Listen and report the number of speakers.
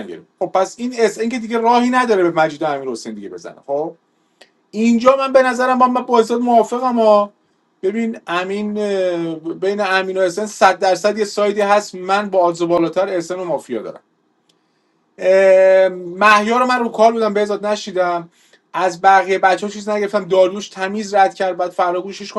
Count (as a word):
one